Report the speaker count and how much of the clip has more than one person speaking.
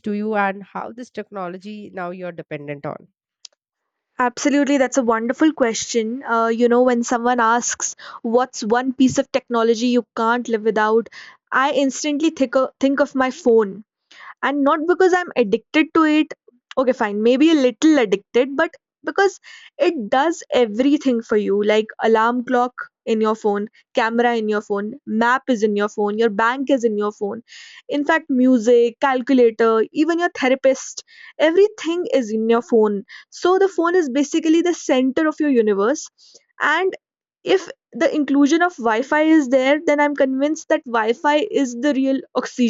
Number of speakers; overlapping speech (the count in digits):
2, no overlap